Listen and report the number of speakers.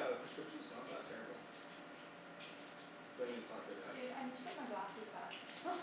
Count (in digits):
2